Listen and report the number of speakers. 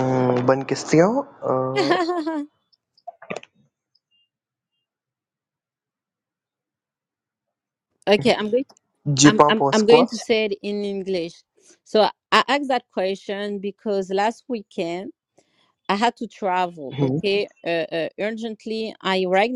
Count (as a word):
two